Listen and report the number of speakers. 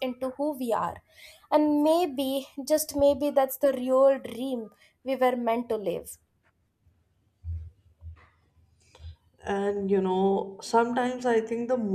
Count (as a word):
two